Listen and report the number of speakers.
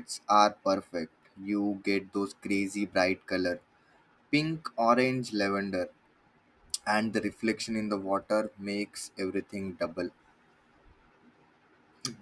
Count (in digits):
1